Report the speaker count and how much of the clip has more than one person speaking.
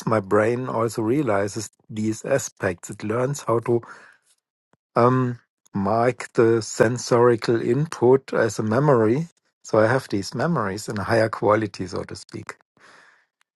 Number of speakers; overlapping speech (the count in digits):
1, no overlap